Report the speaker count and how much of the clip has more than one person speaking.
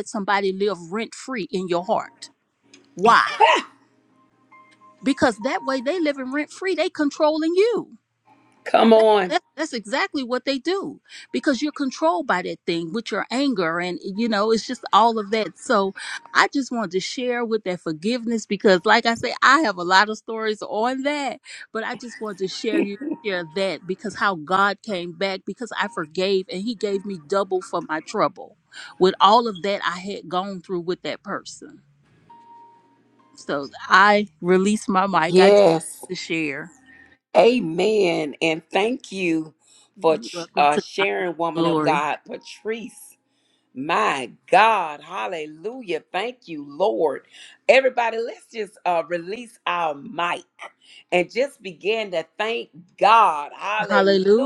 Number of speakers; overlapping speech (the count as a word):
two, about 4%